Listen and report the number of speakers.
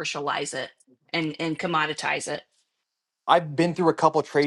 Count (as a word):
two